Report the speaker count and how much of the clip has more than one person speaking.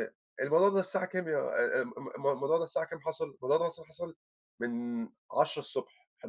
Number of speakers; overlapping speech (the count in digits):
1, no overlap